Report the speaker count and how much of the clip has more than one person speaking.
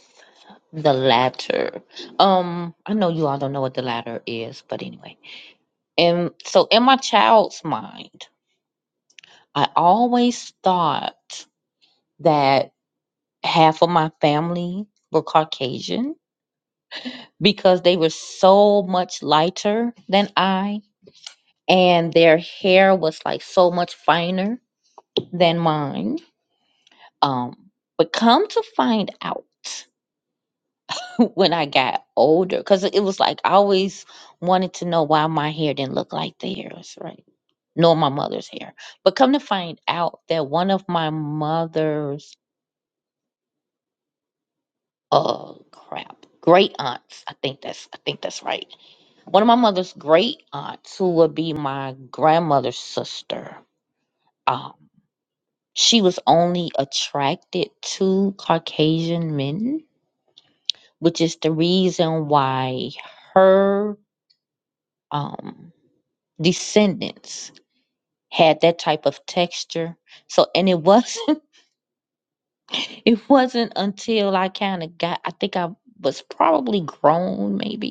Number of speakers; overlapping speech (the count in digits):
1, no overlap